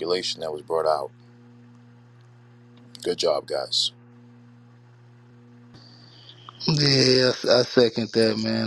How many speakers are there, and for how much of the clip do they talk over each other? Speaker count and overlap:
2, no overlap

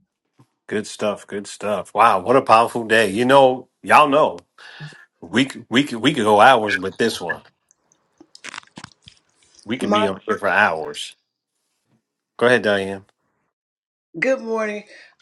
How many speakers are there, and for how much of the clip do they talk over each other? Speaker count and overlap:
2, about 2%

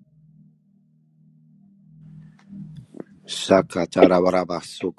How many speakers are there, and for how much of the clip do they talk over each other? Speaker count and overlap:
1, no overlap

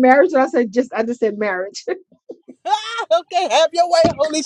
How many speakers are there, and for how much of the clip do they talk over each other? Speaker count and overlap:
2, no overlap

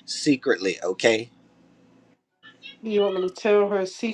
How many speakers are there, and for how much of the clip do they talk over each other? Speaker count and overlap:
2, no overlap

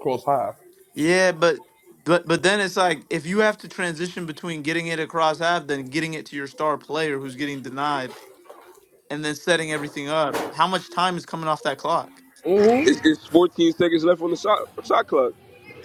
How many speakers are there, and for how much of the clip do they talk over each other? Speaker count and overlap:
3, about 1%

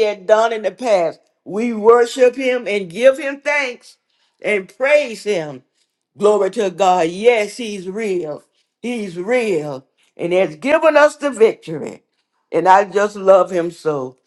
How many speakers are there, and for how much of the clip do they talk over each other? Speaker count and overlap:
1, no overlap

